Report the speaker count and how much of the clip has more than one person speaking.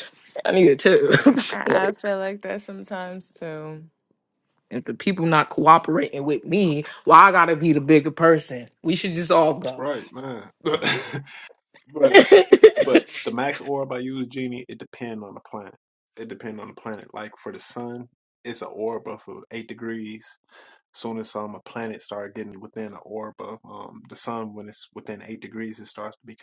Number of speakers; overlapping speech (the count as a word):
three, about 1%